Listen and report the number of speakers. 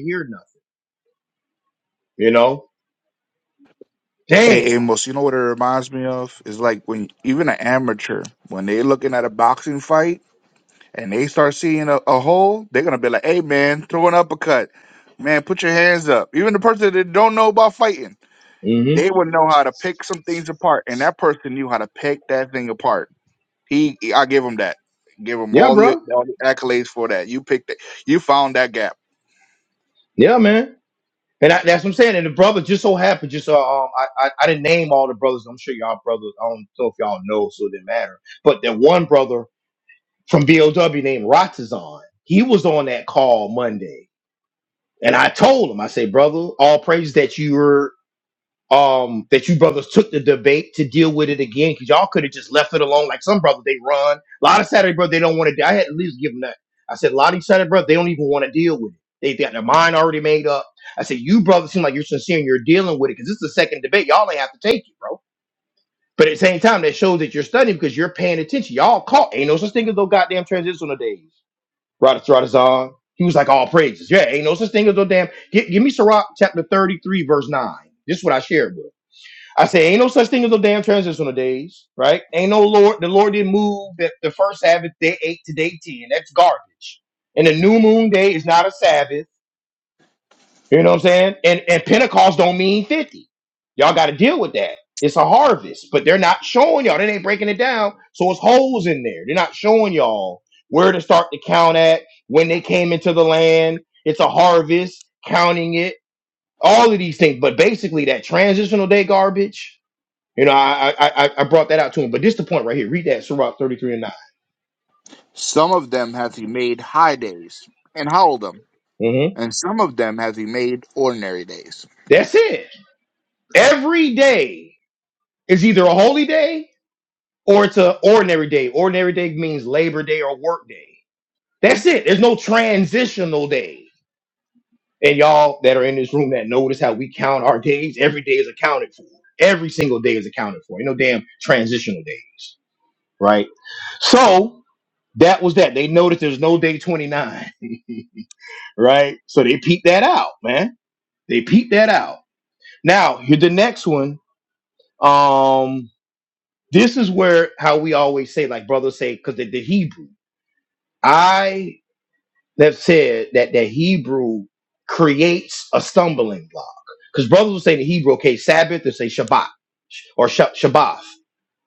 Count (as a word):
two